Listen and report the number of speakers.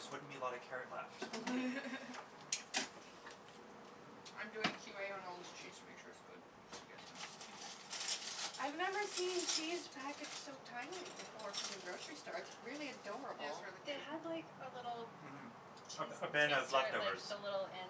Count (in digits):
4